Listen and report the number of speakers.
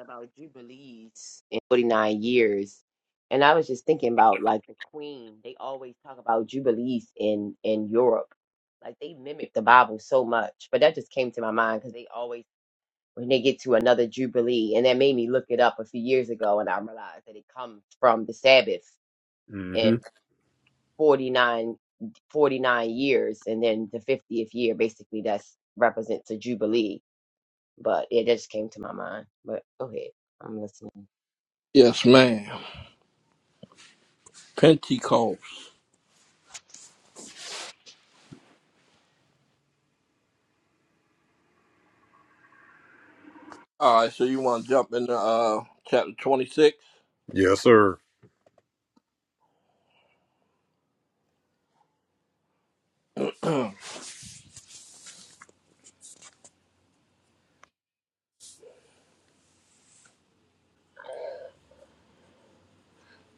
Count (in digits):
3